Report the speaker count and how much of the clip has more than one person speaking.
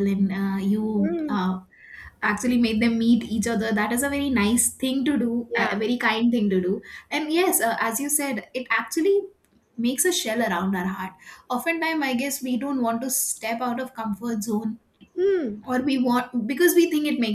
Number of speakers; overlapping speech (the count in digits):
2, about 4%